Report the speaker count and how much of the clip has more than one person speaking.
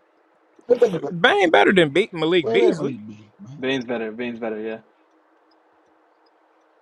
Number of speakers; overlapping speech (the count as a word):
three, about 14%